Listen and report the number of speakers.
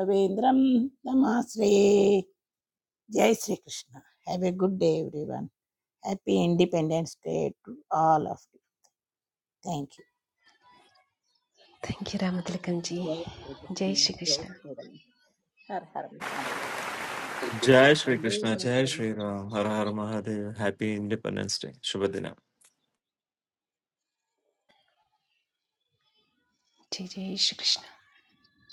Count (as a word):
four